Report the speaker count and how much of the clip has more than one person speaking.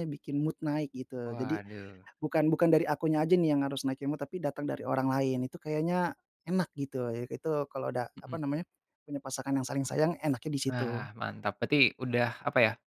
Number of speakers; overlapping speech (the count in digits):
2, about 6%